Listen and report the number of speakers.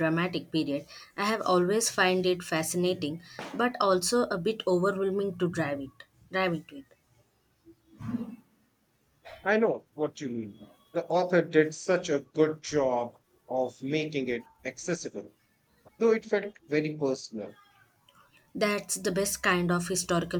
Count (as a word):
two